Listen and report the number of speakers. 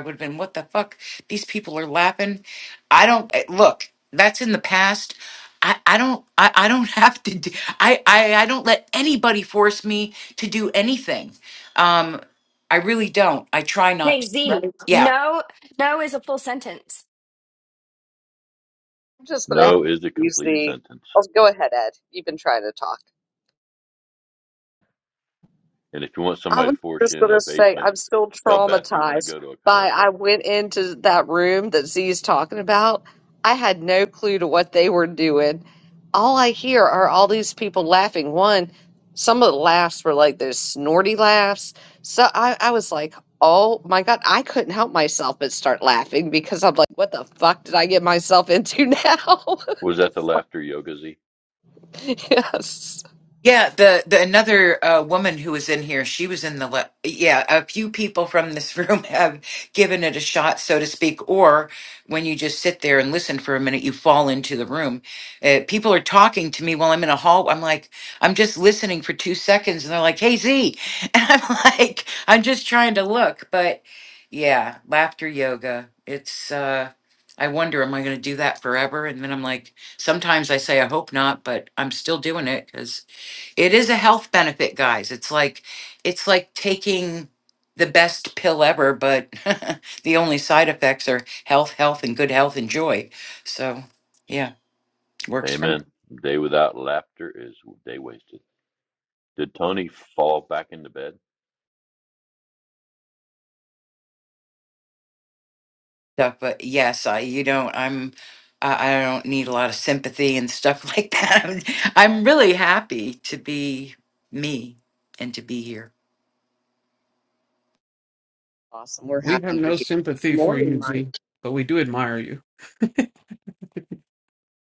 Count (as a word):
five